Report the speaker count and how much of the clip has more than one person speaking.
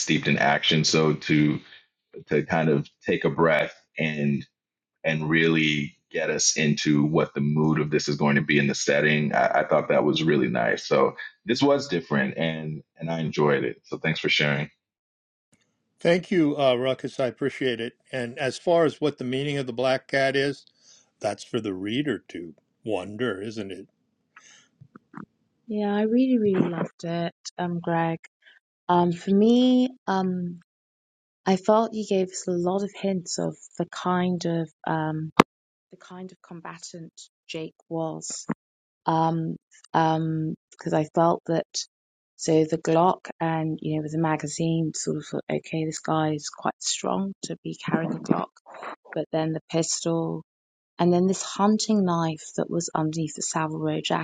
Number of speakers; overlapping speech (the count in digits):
3, no overlap